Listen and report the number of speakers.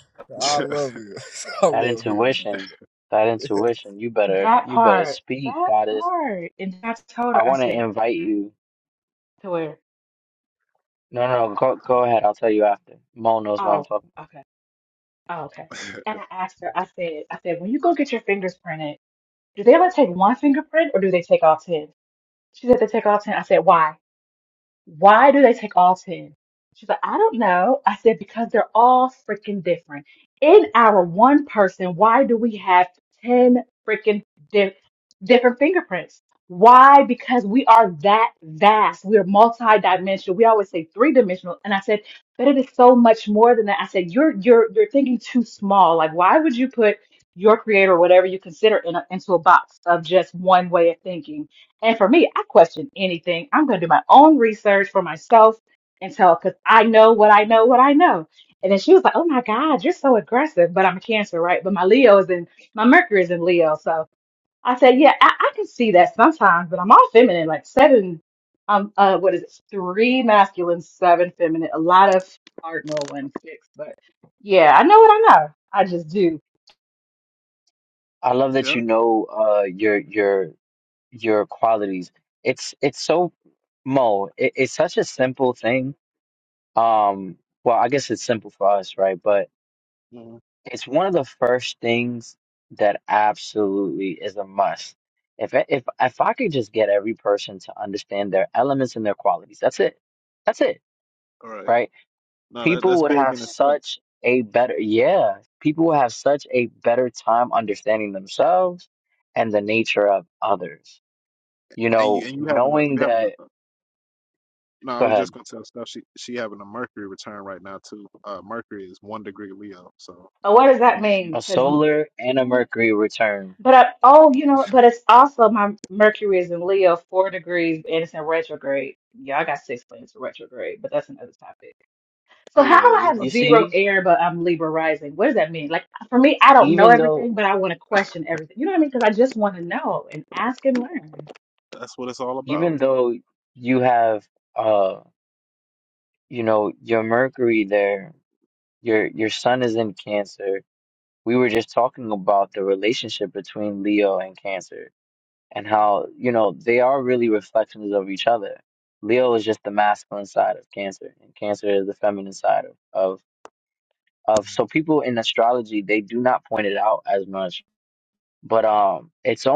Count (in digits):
4